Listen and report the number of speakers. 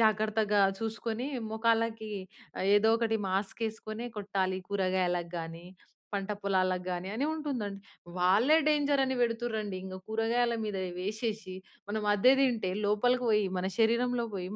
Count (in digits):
1